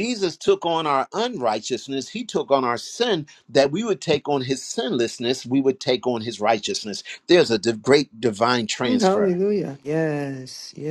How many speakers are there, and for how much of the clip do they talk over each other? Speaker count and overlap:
2, about 5%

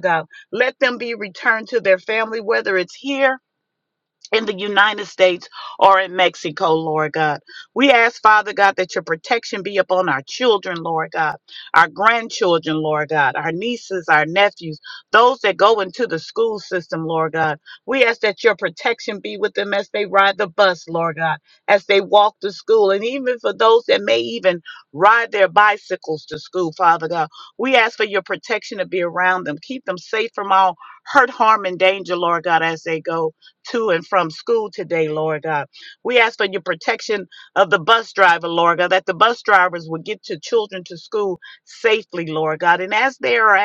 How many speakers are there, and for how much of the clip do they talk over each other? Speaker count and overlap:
1, no overlap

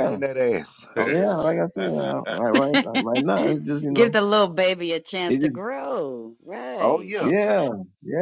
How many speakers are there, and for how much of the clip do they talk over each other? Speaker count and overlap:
3, about 15%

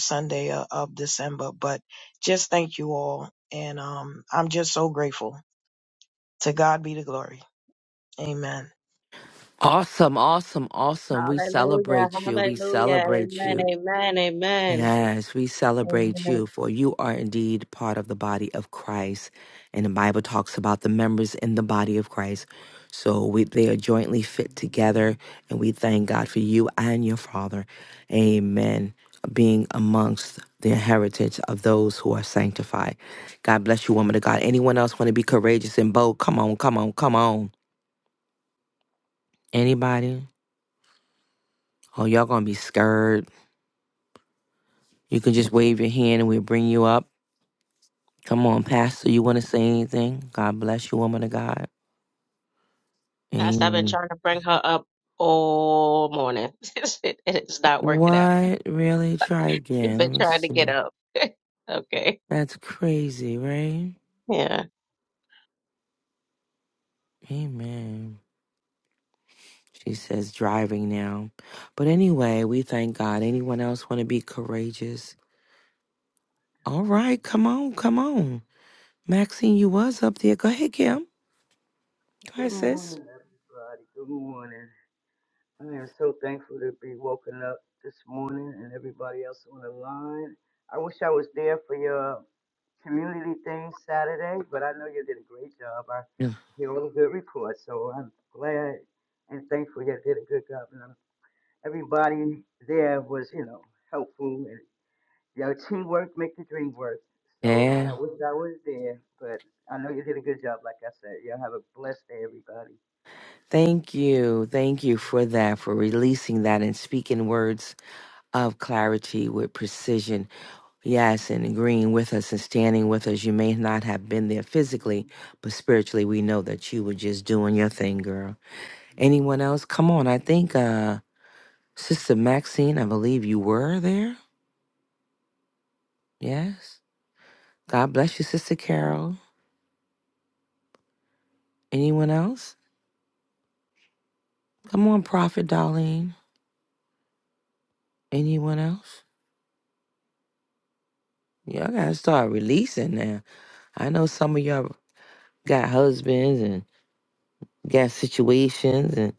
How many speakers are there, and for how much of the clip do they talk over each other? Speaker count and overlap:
4, about 4%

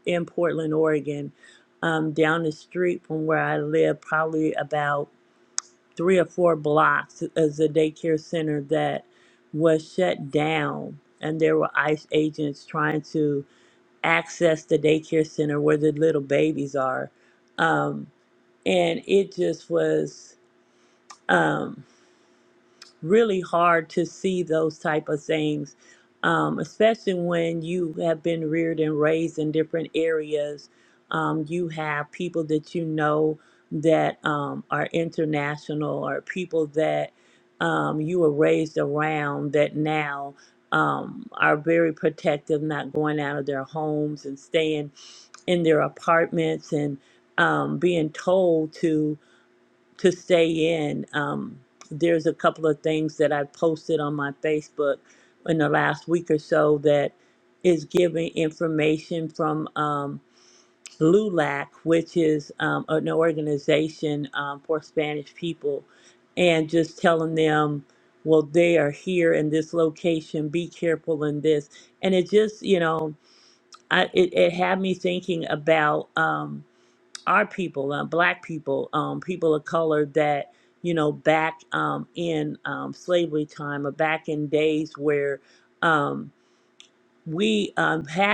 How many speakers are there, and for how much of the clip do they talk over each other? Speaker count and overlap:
1, no overlap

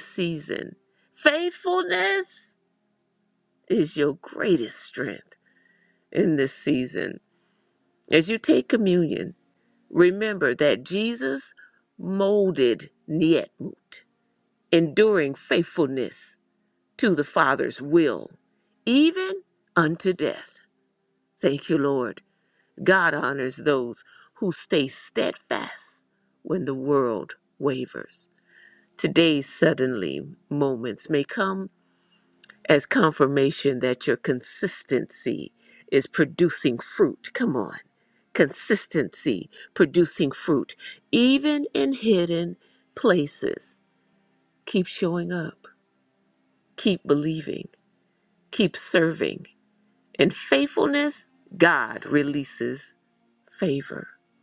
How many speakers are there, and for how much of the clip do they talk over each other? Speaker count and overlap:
1, no overlap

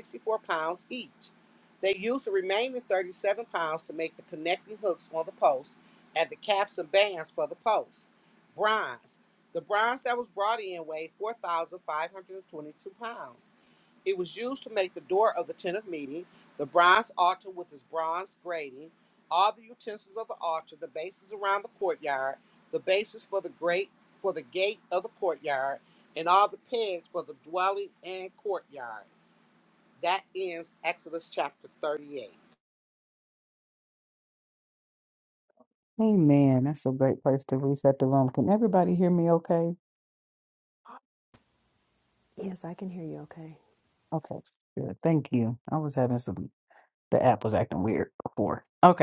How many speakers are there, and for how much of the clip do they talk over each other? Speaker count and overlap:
3, no overlap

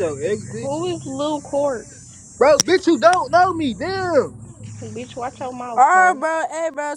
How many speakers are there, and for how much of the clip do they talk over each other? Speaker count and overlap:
3, about 7%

